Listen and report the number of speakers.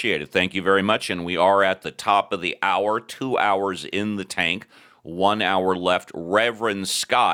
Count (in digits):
1